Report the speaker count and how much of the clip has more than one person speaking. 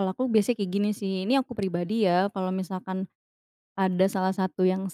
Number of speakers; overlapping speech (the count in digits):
1, no overlap